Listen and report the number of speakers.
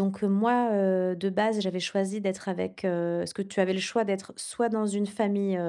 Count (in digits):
1